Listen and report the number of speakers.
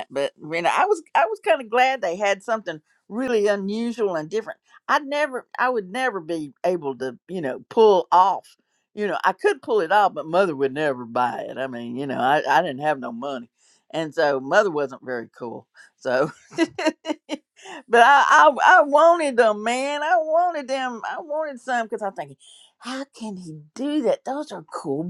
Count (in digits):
1